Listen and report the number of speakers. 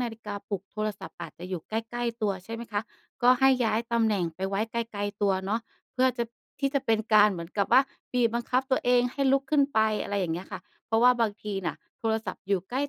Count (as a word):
one